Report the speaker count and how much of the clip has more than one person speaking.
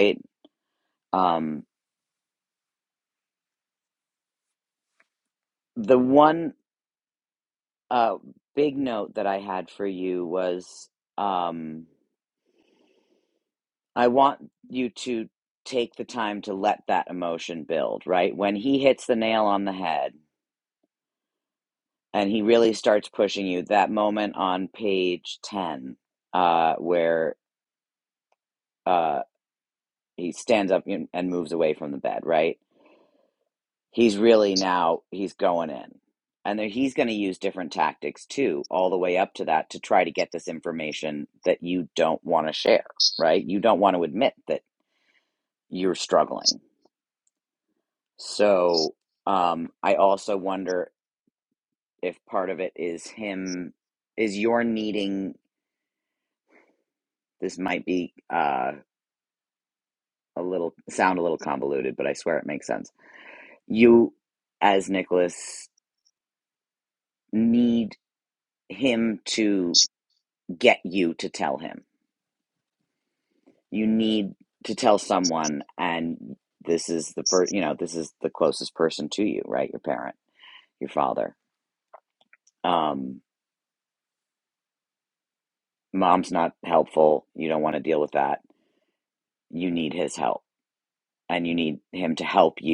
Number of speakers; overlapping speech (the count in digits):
1, no overlap